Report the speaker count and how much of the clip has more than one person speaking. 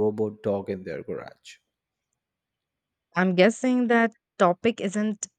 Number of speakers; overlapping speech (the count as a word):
two, no overlap